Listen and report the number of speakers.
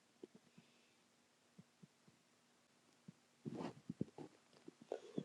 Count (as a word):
zero